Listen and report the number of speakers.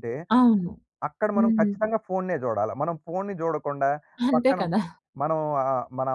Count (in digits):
2